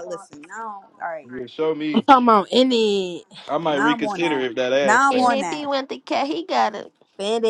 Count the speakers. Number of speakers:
four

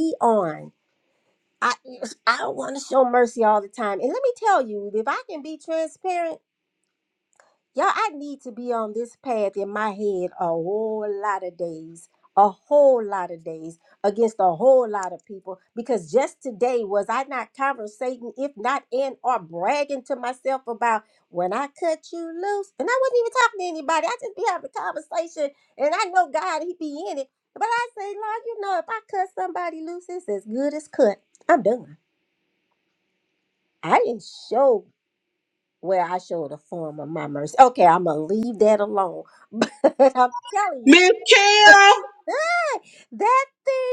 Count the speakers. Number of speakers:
two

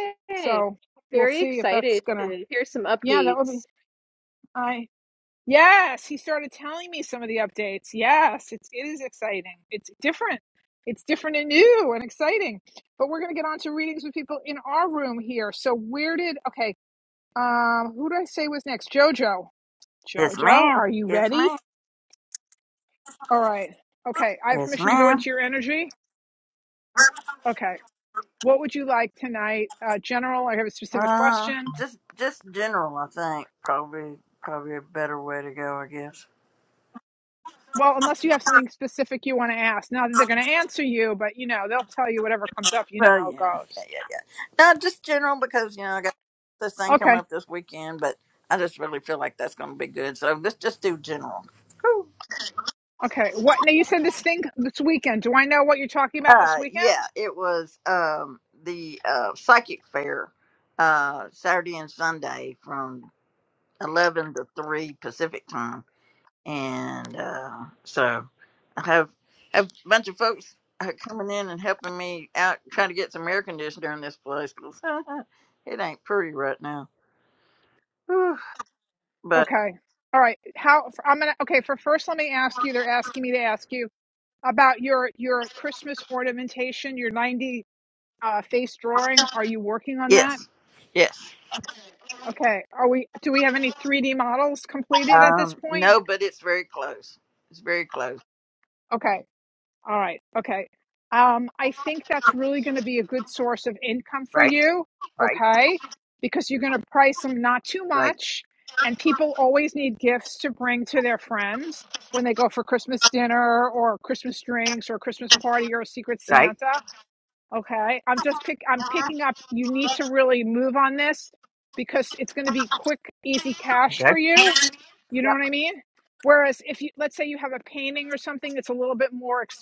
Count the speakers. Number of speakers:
three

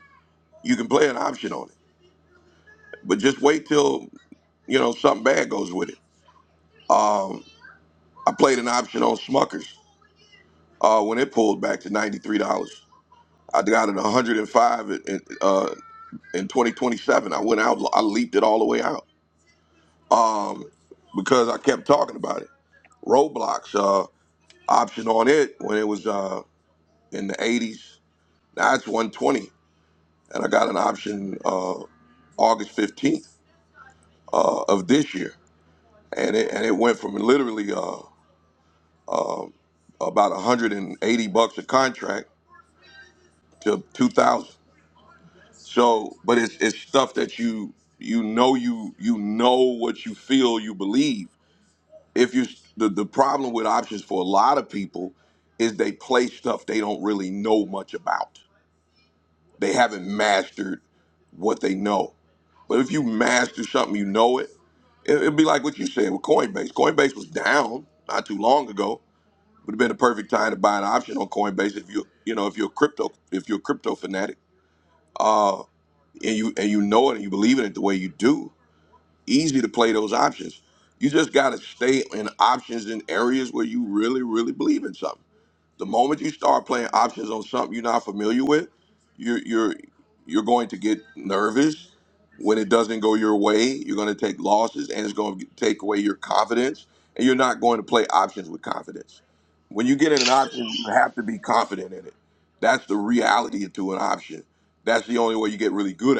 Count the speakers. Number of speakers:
one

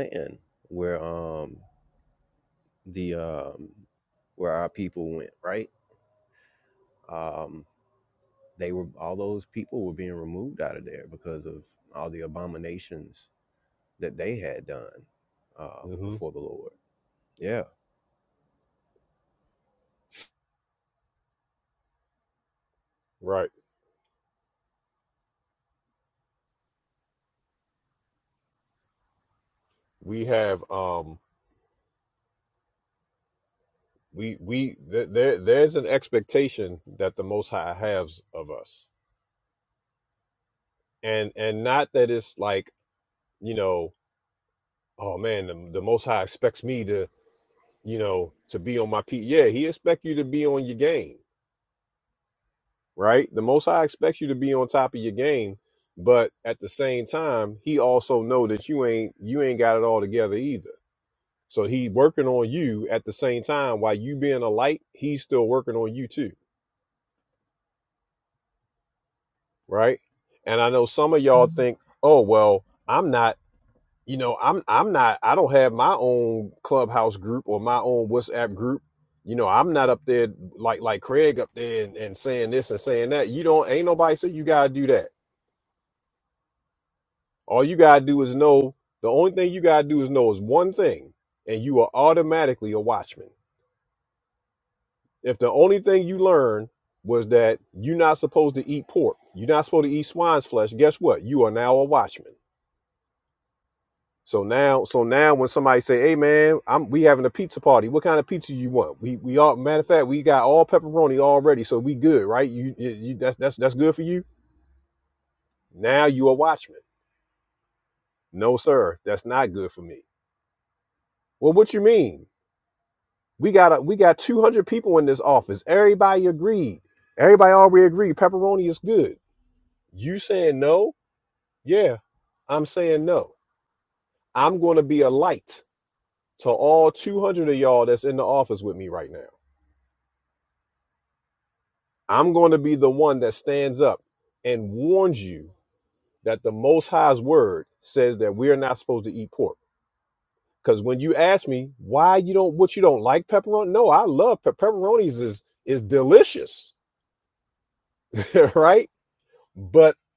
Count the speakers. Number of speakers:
two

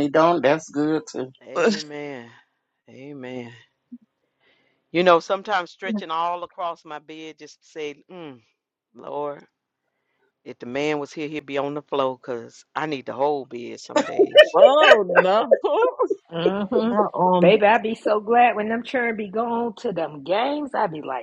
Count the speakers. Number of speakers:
four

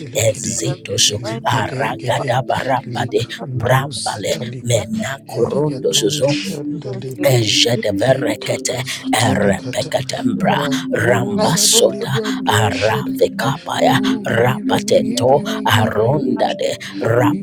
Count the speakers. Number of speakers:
two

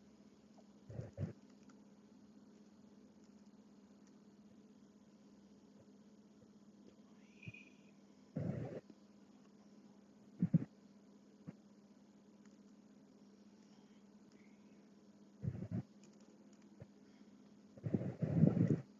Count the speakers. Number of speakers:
zero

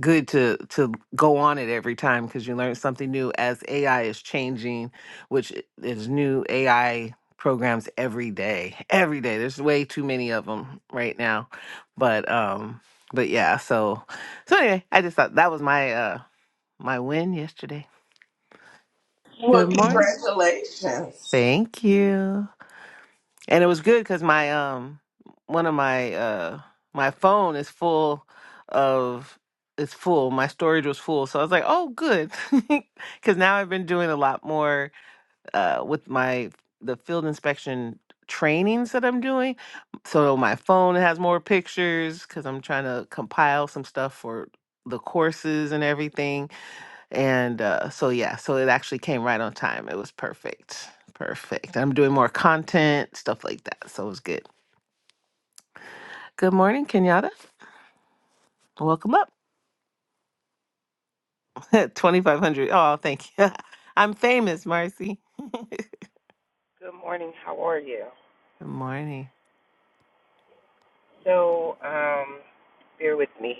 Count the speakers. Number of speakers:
three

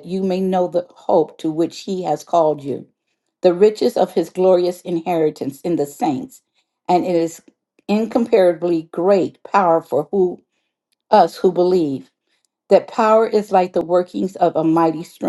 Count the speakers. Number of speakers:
one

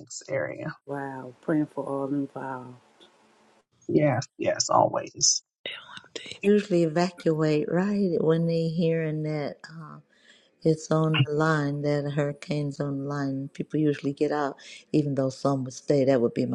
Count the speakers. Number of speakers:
three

